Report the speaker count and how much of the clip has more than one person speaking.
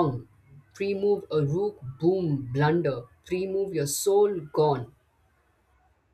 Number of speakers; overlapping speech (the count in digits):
1, no overlap